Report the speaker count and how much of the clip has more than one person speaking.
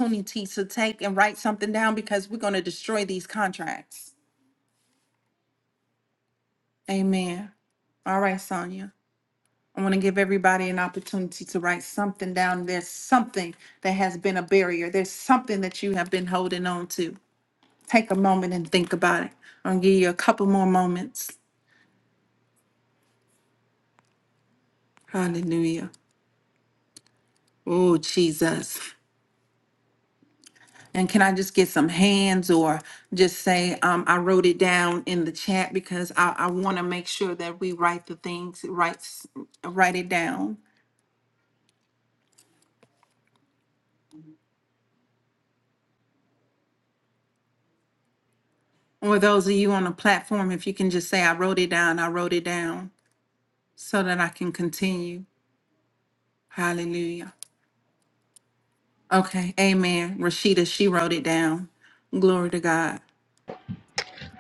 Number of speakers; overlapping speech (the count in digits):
1, no overlap